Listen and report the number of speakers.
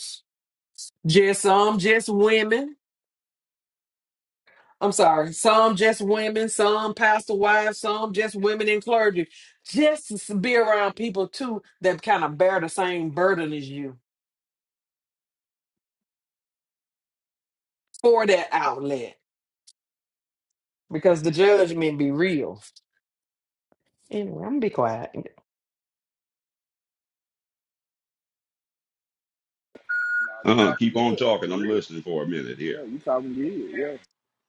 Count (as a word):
three